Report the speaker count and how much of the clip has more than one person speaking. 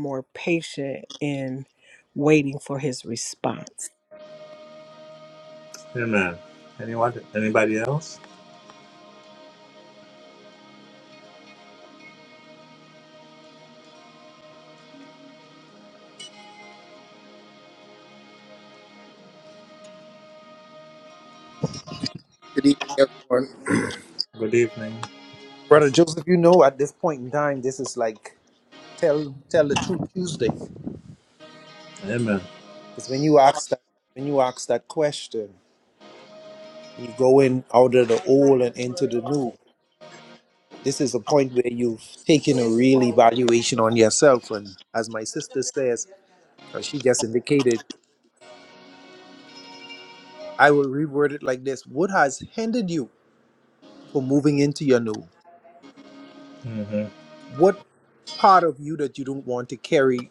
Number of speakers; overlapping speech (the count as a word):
three, under 1%